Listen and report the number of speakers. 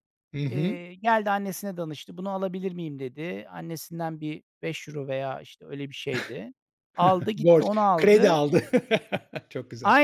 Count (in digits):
2